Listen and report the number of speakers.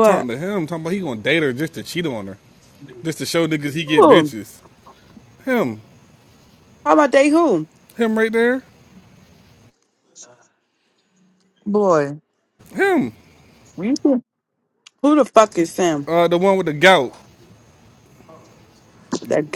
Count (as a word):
two